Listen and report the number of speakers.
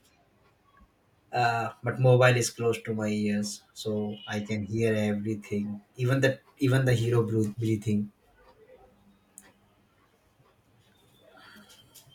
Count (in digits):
1